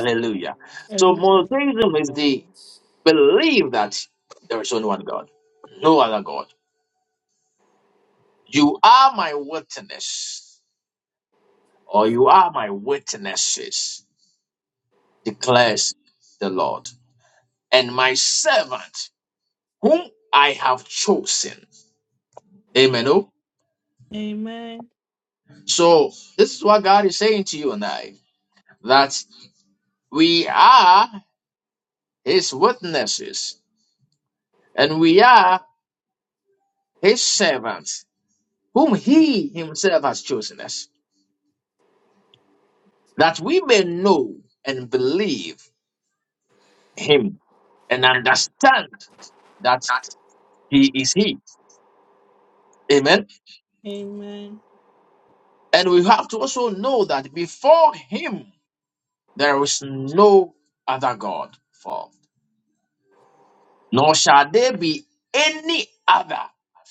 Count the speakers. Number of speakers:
2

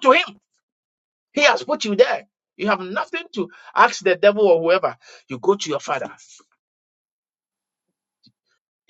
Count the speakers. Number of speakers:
1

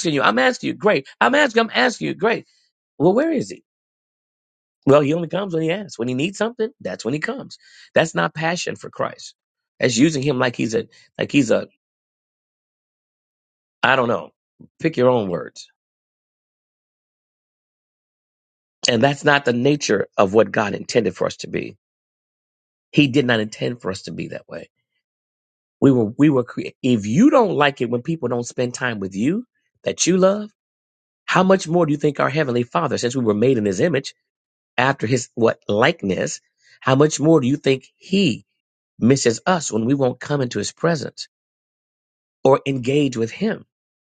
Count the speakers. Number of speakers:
1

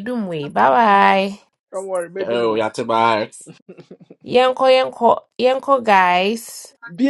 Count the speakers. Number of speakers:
3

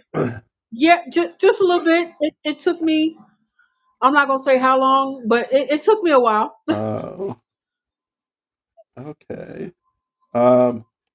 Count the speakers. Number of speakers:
2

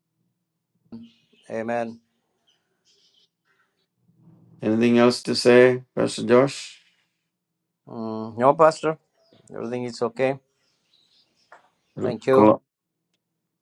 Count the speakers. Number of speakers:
2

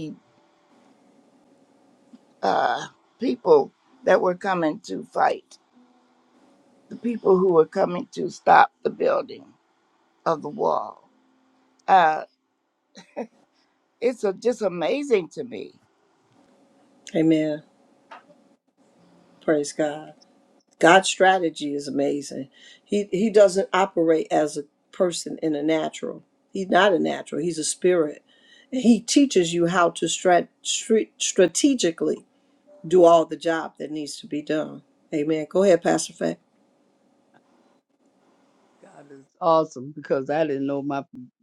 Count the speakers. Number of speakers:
3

